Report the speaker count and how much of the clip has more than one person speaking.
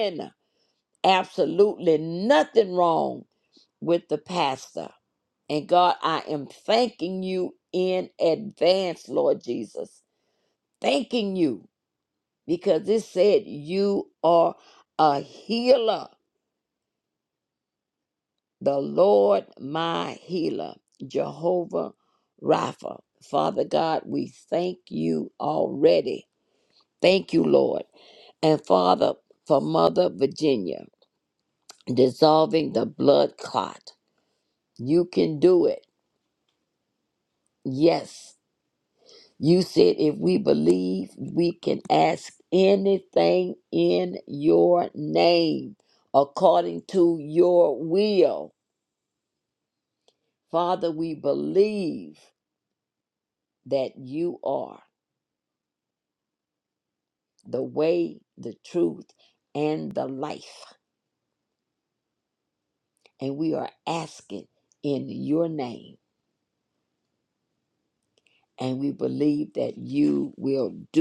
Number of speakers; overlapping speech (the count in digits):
1, no overlap